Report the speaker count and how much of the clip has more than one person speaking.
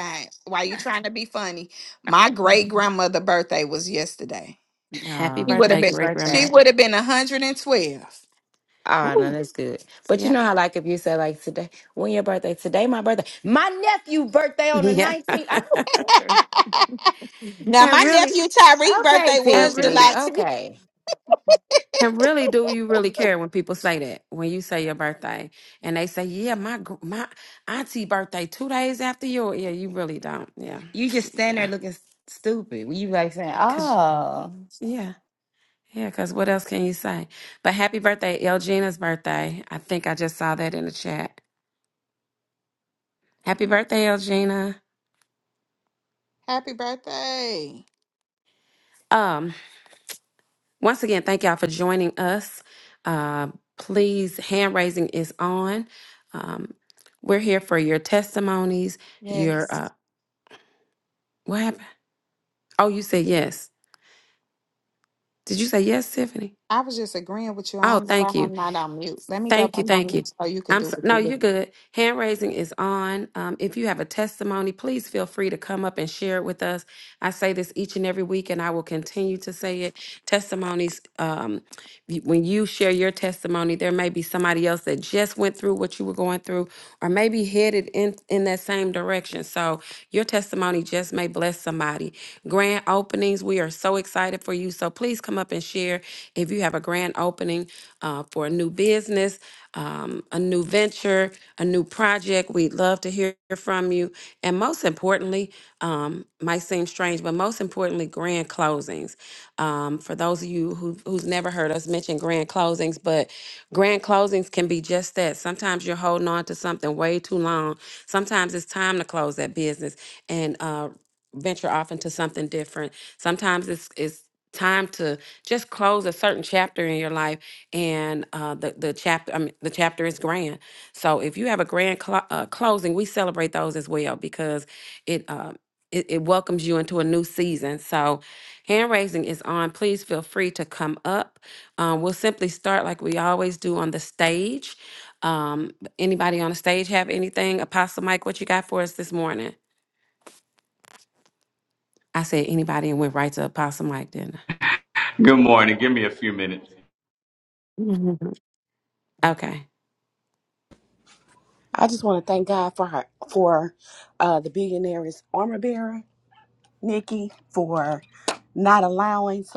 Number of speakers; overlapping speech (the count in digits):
5, about 4%